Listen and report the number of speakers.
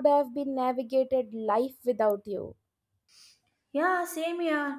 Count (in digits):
2